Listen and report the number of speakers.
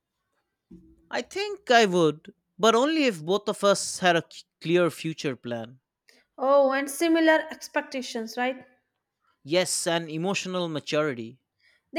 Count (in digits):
2